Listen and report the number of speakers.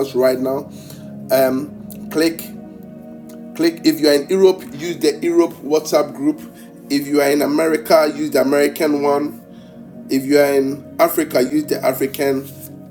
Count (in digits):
1